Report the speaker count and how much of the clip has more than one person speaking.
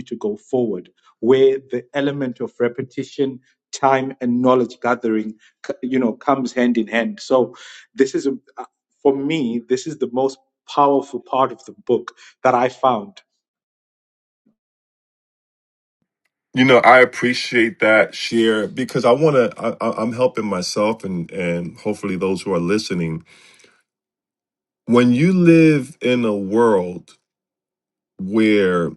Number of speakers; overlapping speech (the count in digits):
2, no overlap